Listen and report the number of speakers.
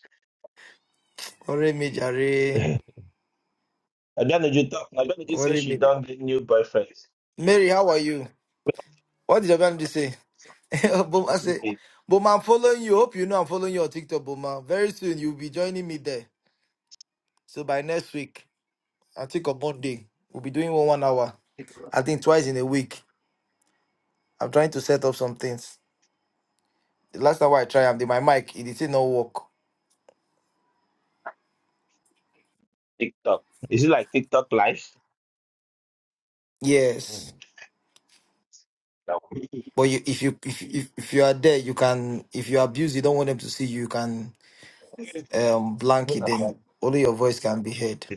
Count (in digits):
2